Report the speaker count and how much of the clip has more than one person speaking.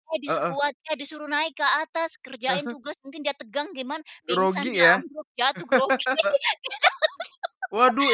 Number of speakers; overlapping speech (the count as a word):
two, about 13%